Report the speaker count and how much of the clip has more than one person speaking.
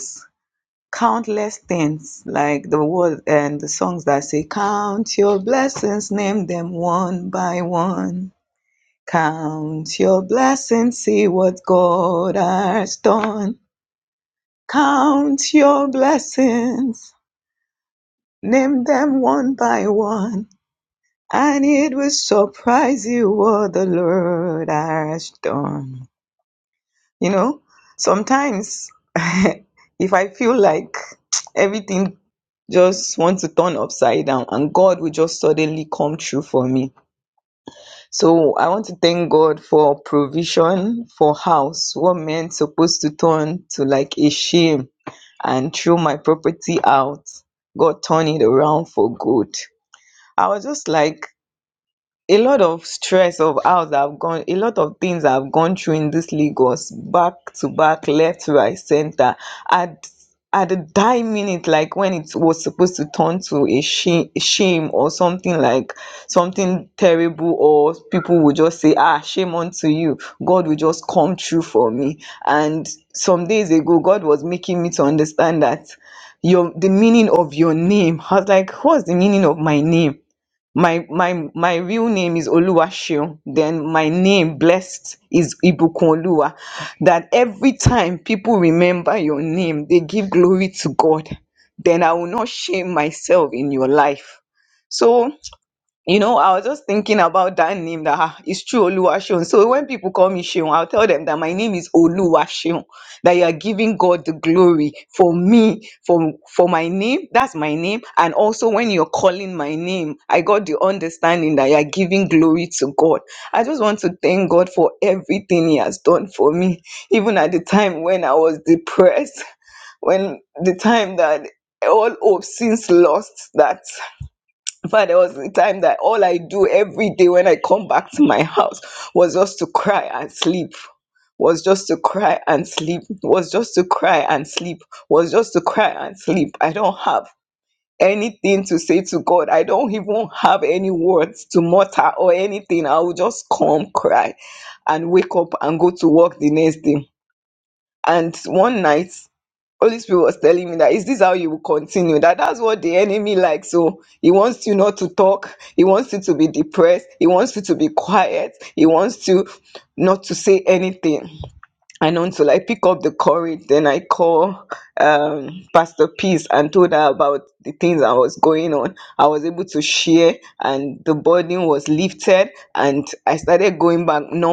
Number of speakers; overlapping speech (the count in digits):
1, no overlap